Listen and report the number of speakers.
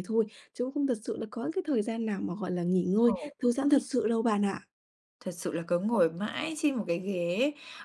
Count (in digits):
2